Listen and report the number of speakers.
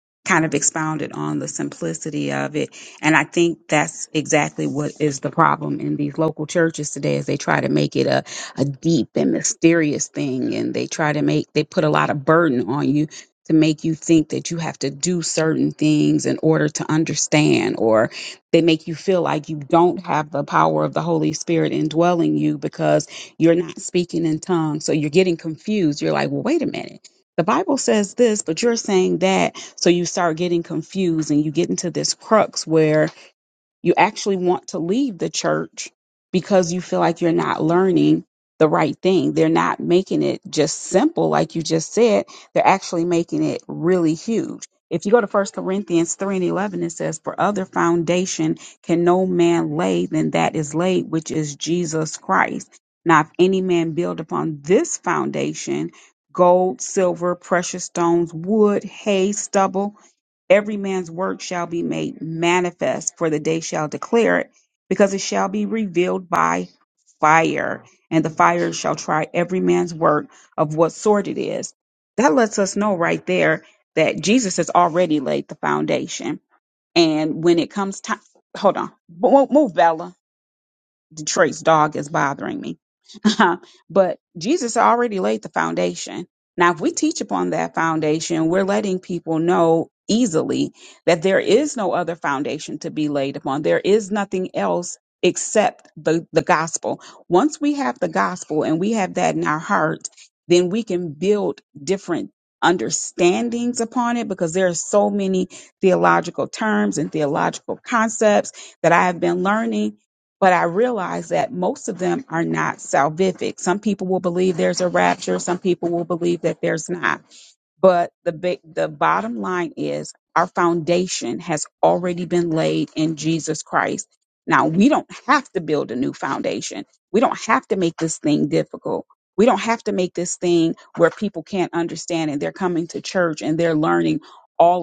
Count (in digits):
1